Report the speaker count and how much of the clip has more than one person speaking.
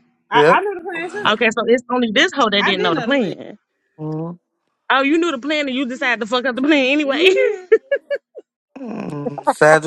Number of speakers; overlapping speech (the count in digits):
3, about 15%